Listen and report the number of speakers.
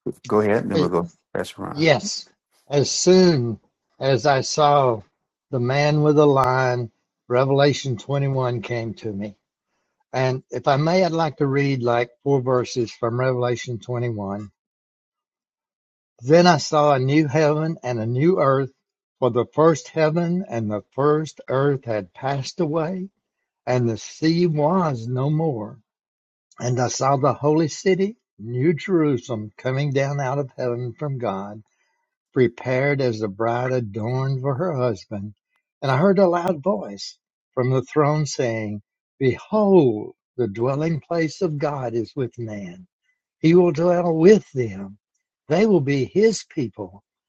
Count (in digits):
2